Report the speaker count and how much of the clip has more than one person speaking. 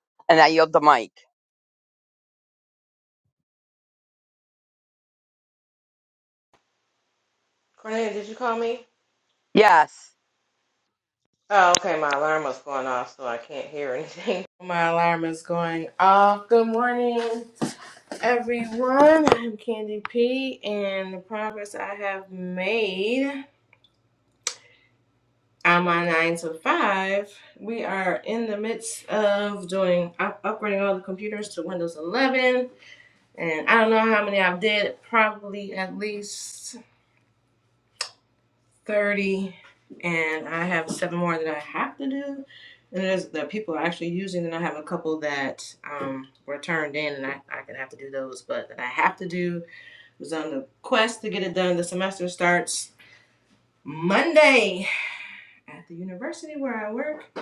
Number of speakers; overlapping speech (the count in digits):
2, no overlap